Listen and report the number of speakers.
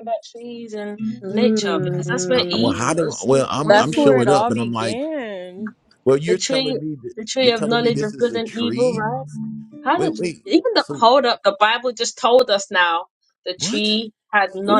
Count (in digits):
3